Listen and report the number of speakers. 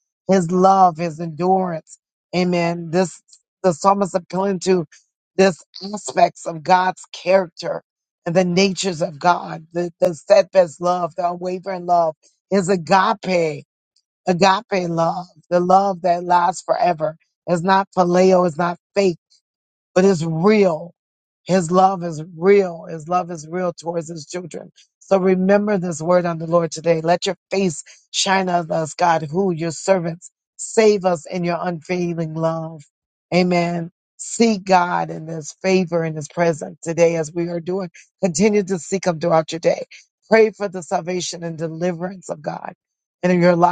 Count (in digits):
1